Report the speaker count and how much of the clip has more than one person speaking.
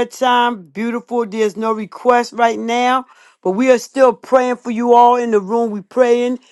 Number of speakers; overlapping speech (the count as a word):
one, no overlap